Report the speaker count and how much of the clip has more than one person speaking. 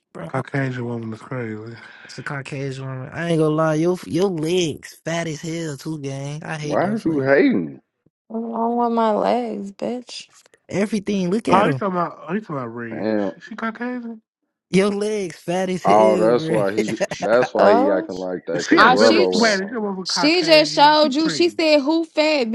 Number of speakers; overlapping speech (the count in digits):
5, about 25%